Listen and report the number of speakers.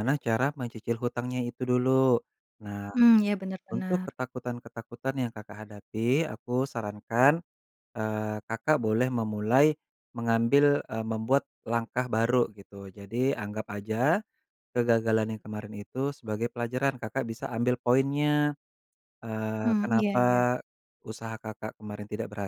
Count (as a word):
two